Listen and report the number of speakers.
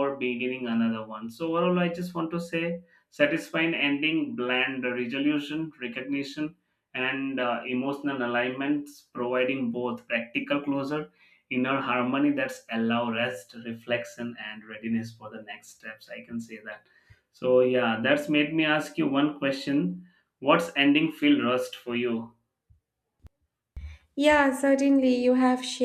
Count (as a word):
two